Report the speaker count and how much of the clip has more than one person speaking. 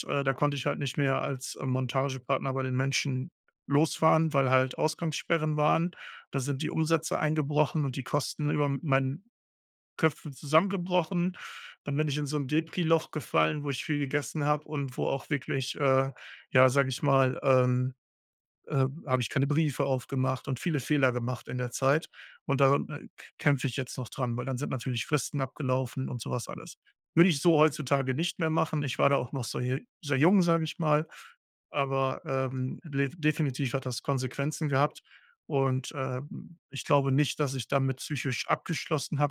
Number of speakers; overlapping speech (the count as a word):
one, no overlap